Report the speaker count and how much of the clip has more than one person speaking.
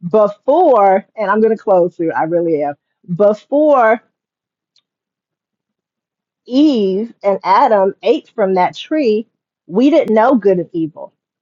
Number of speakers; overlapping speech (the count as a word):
one, no overlap